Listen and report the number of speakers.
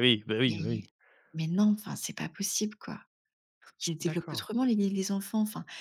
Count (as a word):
two